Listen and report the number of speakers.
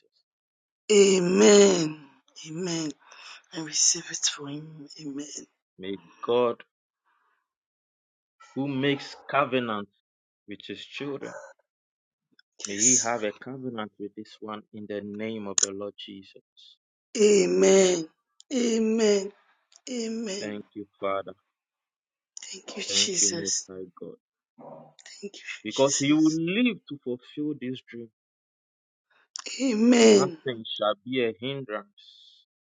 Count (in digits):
2